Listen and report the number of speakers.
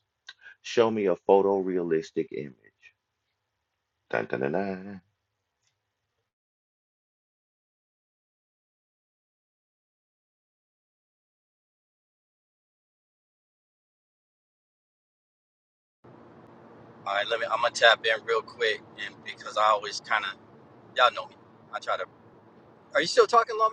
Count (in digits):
2